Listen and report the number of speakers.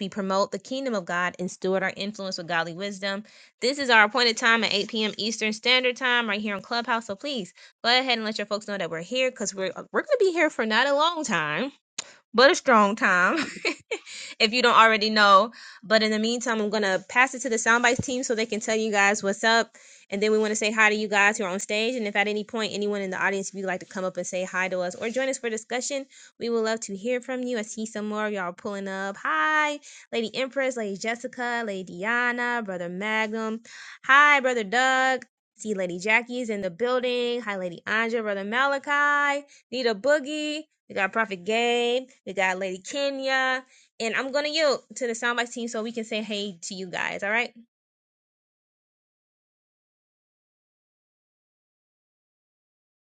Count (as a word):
one